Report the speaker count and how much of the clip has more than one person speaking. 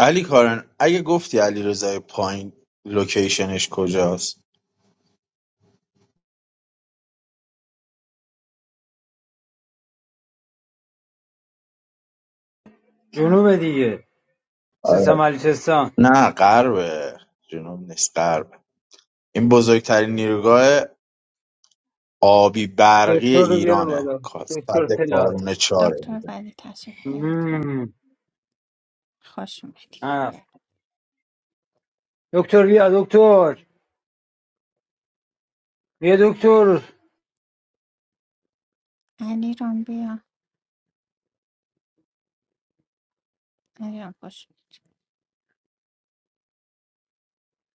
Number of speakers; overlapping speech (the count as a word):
three, about 7%